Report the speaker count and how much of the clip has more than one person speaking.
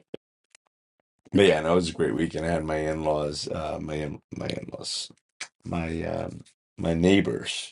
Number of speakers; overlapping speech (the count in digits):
1, no overlap